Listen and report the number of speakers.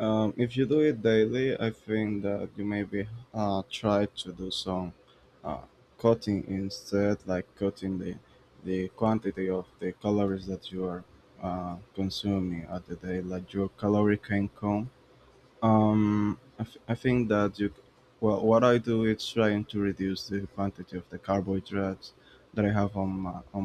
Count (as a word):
one